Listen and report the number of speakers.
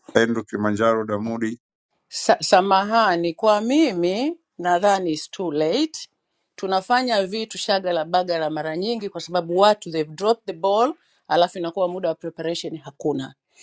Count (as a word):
two